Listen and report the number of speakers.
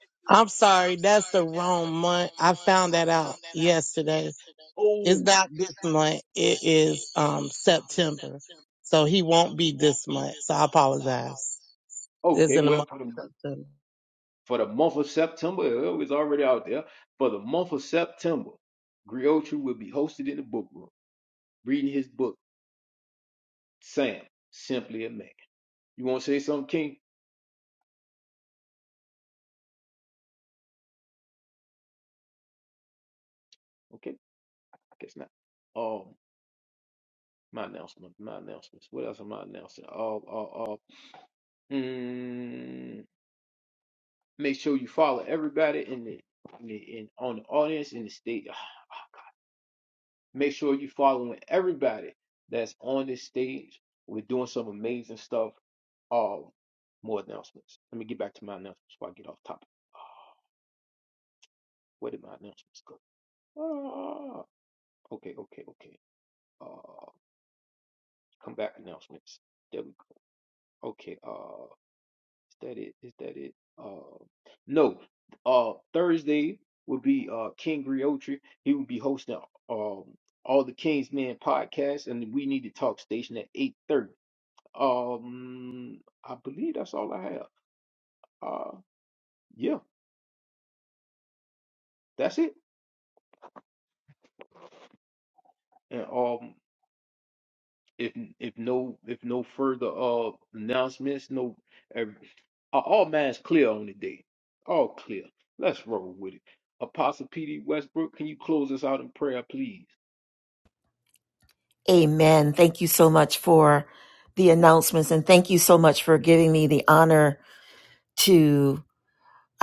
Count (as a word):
three